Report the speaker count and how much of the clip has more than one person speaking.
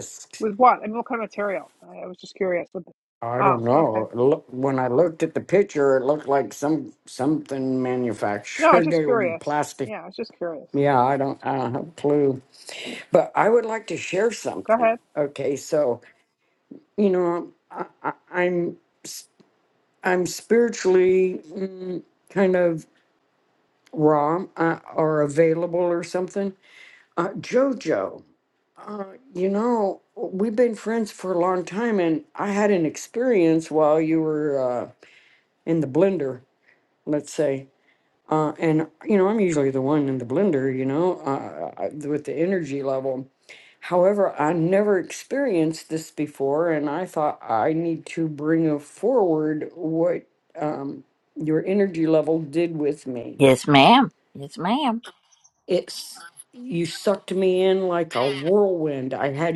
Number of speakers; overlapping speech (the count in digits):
3, about 3%